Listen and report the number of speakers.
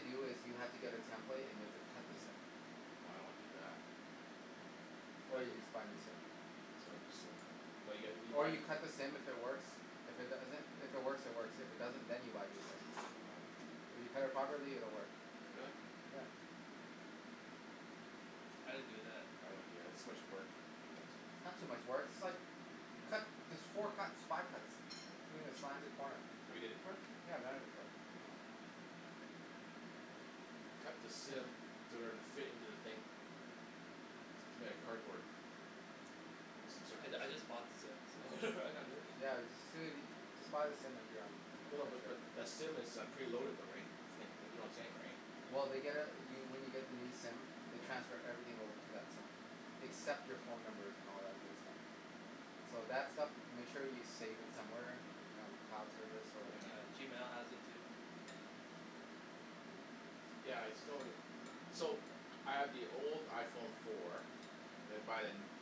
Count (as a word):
three